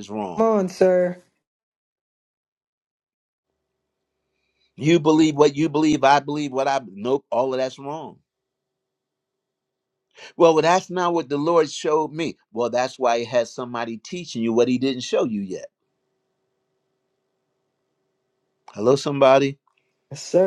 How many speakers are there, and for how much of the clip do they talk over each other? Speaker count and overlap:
two, under 1%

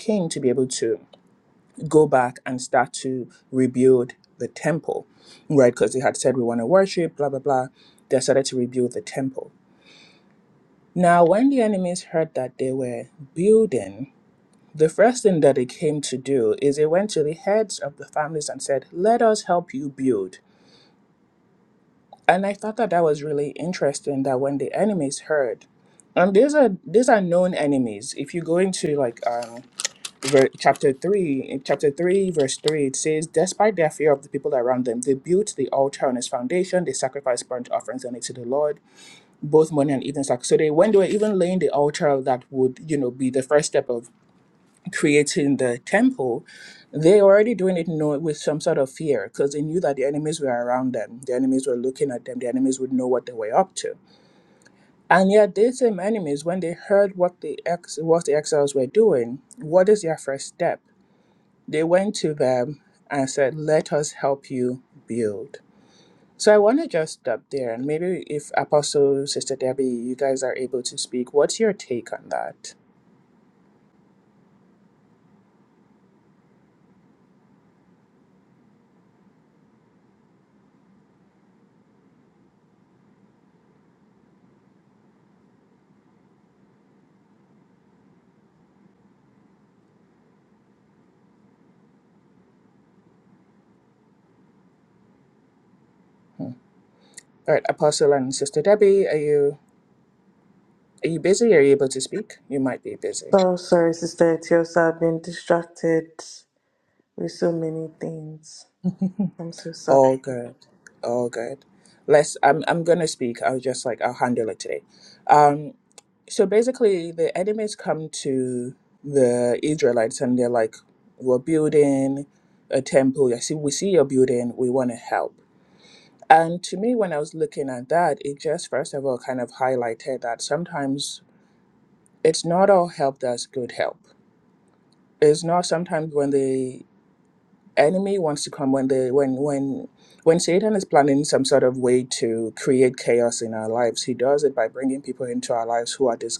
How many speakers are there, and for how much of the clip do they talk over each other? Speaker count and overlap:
two, under 1%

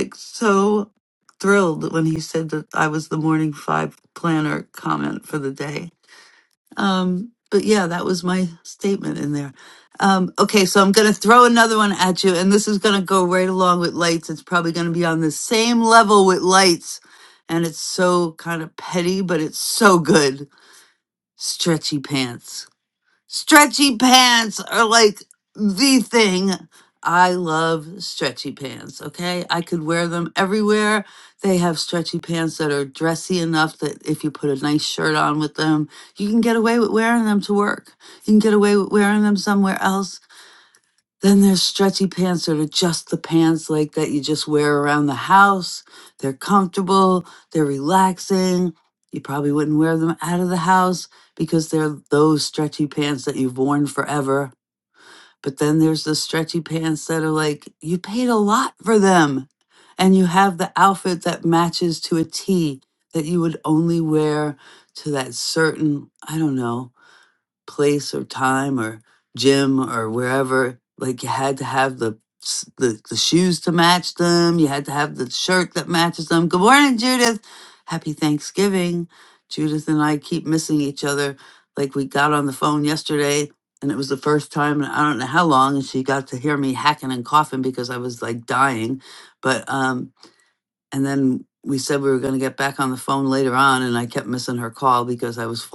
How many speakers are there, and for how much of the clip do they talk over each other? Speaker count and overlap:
one, no overlap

